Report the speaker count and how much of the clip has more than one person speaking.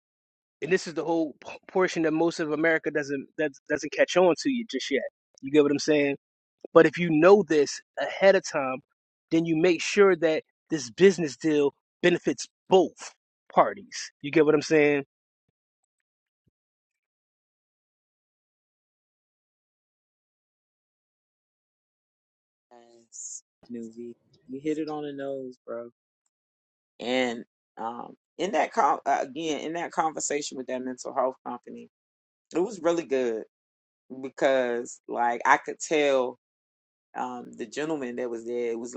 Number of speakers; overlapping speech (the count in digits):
2, no overlap